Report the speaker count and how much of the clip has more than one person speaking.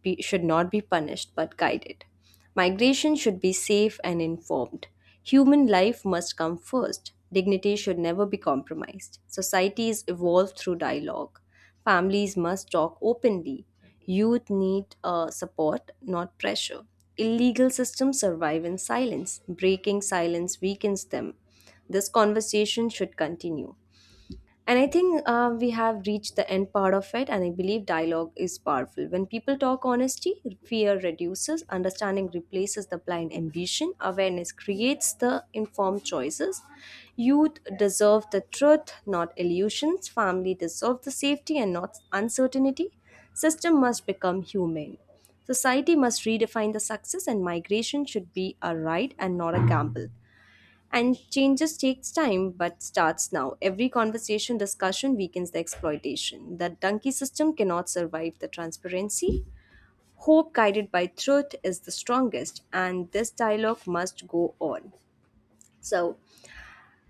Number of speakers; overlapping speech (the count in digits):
1, no overlap